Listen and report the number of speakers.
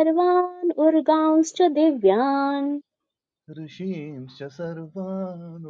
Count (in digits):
2